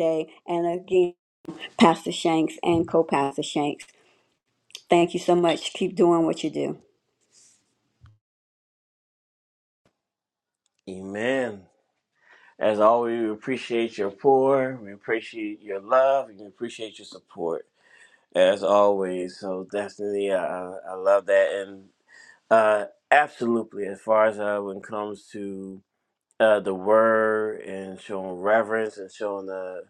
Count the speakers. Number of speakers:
two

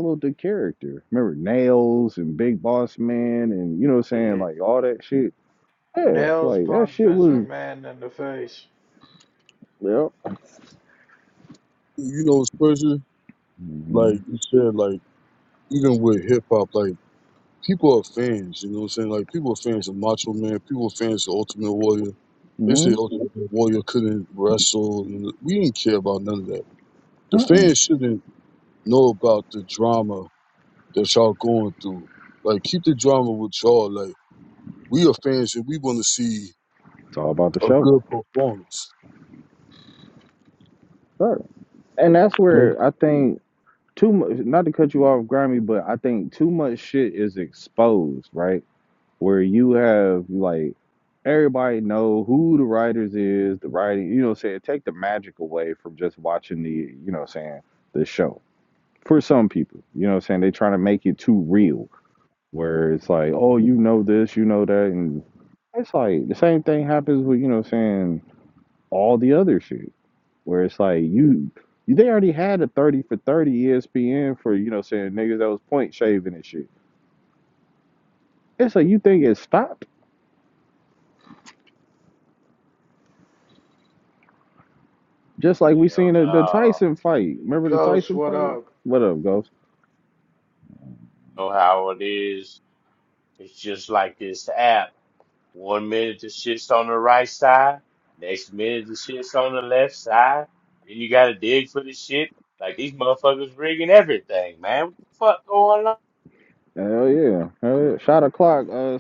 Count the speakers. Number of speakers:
four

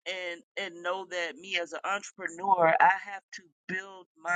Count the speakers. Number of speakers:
one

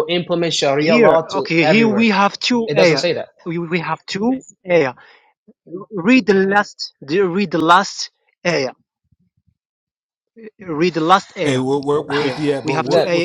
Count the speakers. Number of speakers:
three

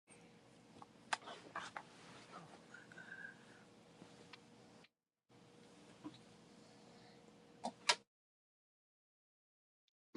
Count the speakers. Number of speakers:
zero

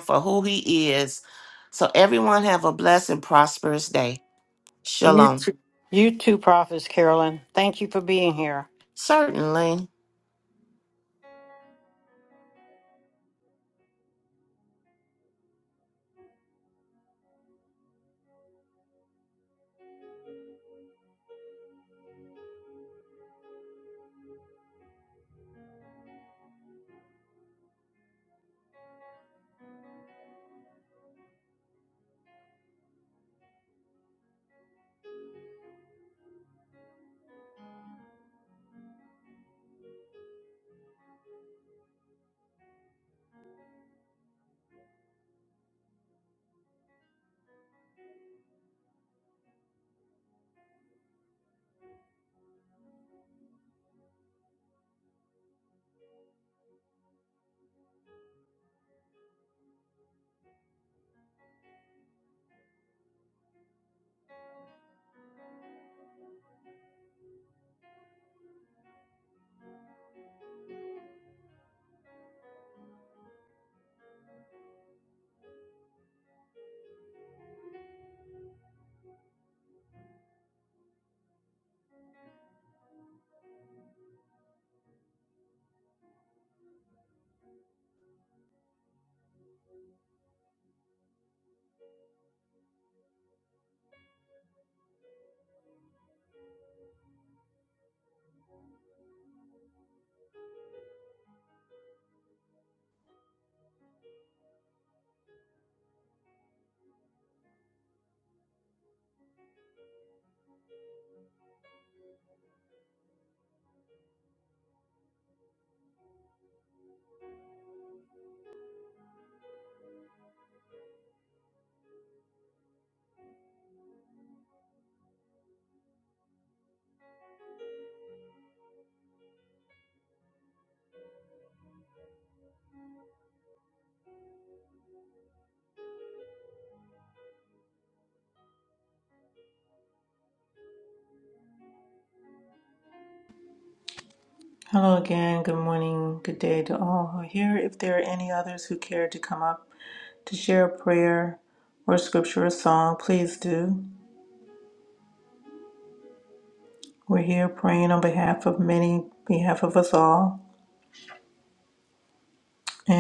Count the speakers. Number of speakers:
three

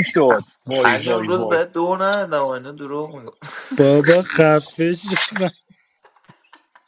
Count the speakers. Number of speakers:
three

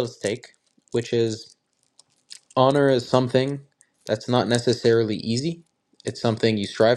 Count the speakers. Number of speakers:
one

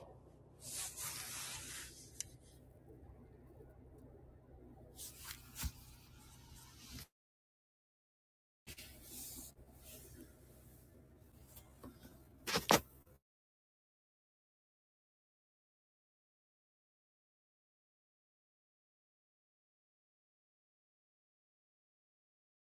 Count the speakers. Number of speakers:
zero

